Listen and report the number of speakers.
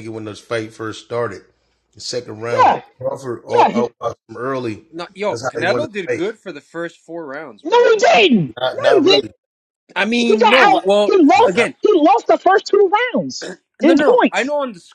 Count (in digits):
3